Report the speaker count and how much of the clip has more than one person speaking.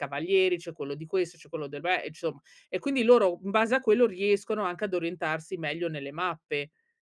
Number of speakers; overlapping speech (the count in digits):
1, no overlap